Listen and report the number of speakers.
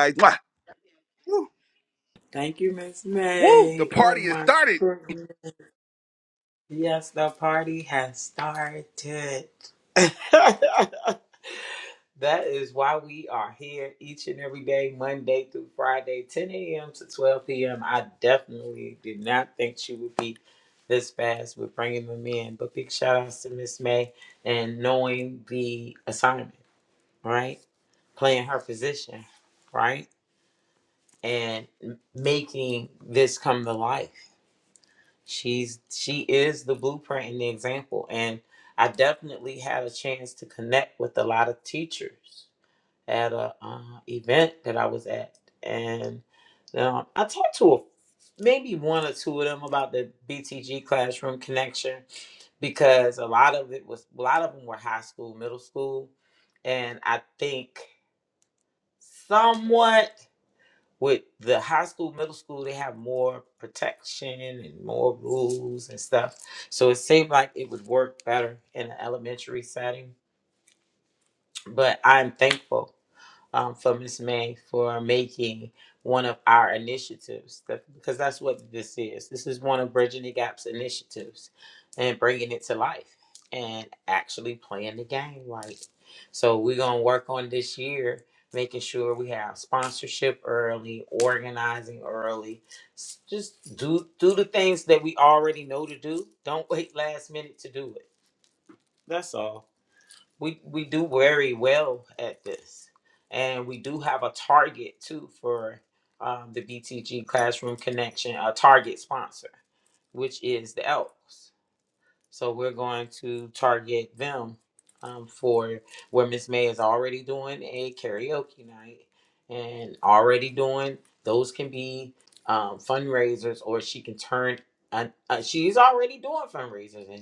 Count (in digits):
2